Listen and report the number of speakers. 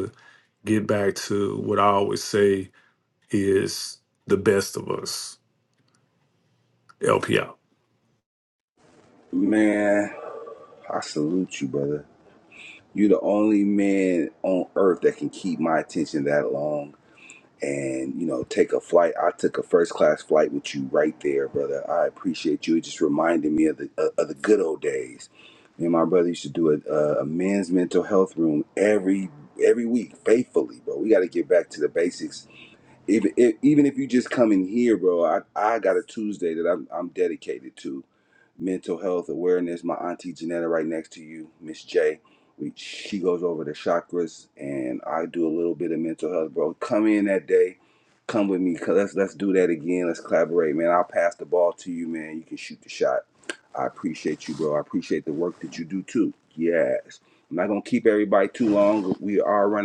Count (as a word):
two